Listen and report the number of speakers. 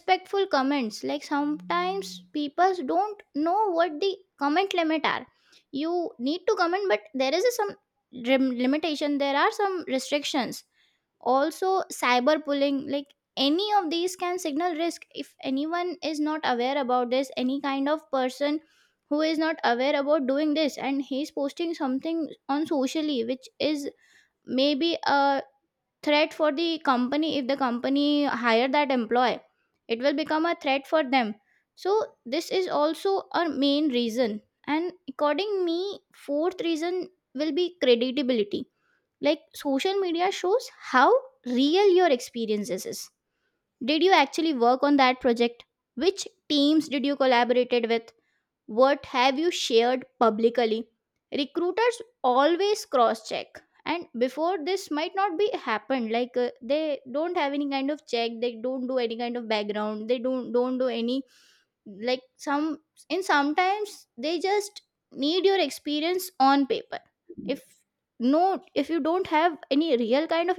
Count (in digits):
1